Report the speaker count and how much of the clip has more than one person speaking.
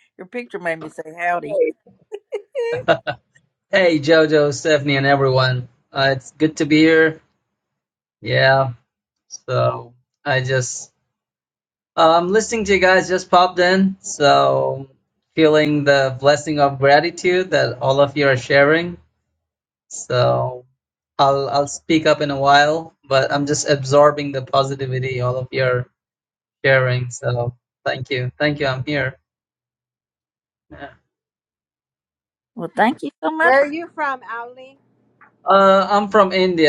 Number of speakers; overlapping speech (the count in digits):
3, about 1%